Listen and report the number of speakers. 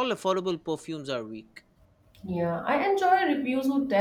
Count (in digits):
2